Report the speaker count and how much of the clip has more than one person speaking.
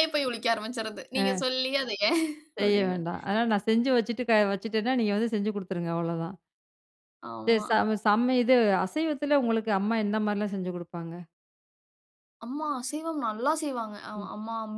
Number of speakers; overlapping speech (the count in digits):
2, about 7%